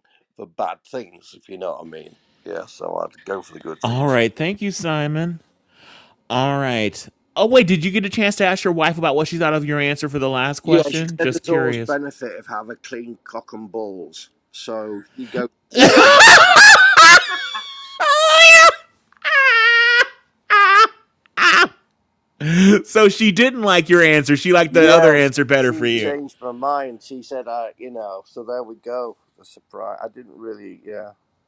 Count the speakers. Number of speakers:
2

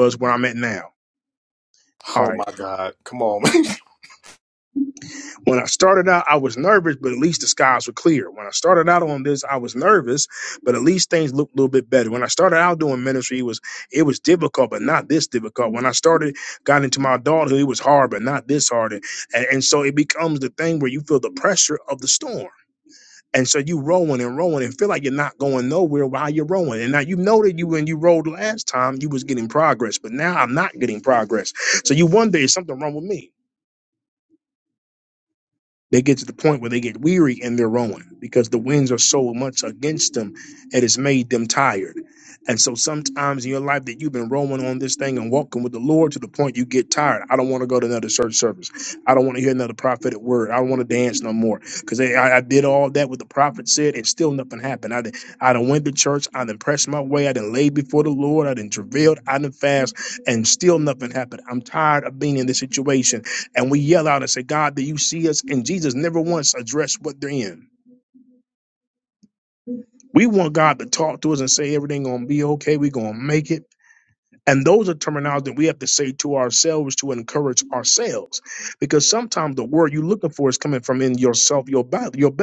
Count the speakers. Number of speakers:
2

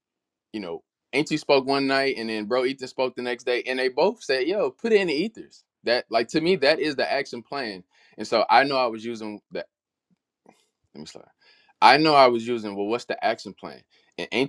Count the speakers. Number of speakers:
1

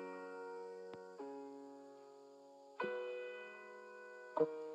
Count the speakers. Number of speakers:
0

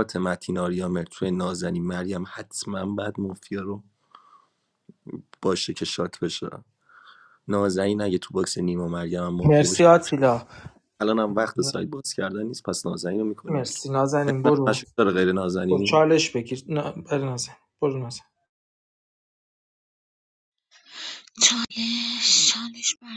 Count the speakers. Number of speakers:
3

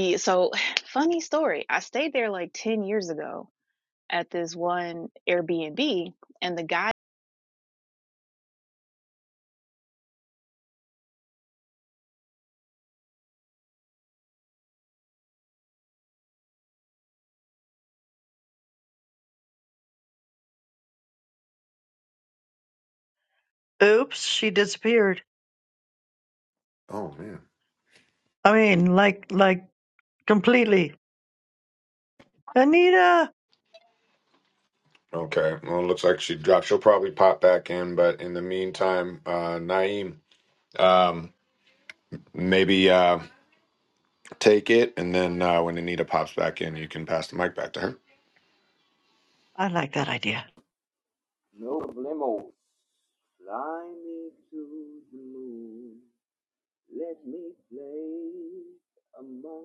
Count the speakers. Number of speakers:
4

